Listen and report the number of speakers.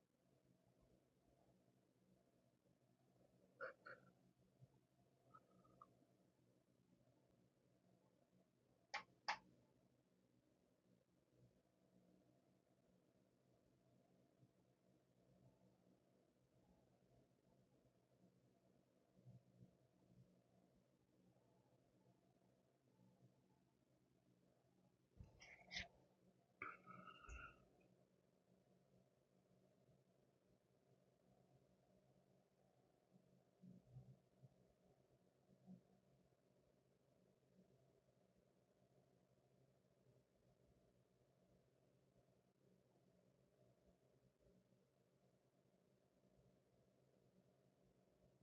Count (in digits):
0